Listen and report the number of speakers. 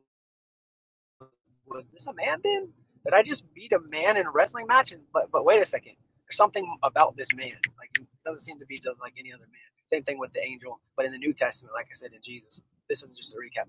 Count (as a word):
one